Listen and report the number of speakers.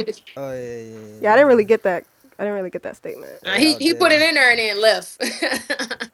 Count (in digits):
3